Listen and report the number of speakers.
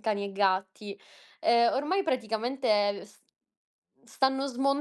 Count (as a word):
one